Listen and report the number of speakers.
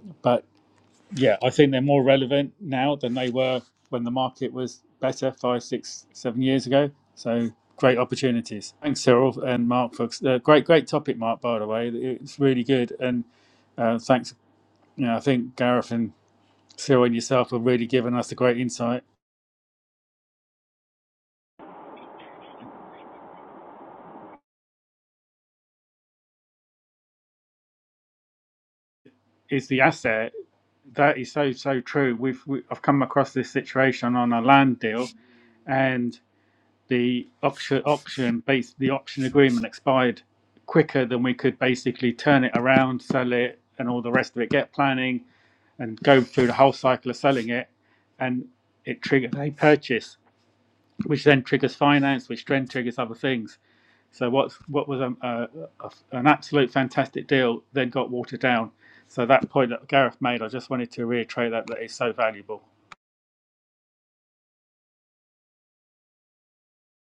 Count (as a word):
one